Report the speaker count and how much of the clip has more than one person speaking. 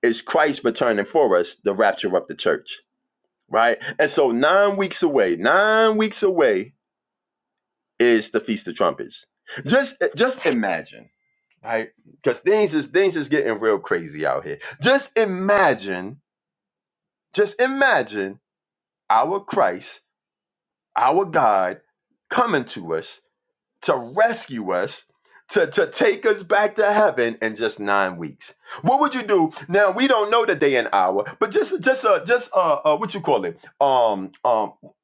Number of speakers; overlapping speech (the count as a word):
one, no overlap